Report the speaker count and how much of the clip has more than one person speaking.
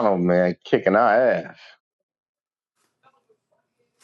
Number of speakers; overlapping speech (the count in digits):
1, no overlap